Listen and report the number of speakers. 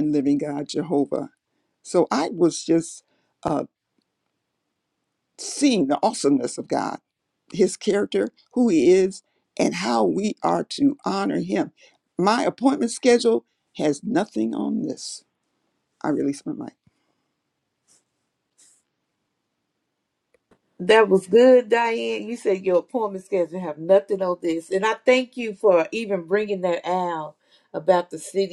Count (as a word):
two